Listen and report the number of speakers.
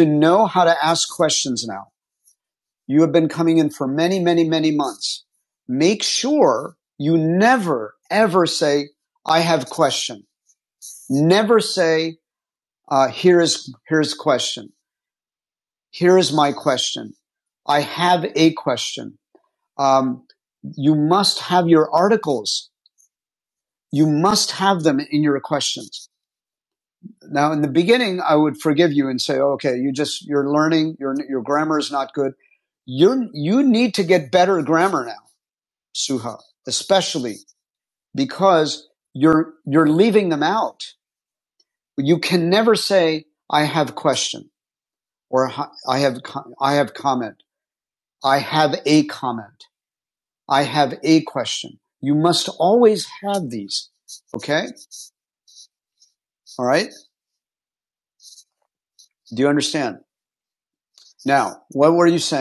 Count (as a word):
one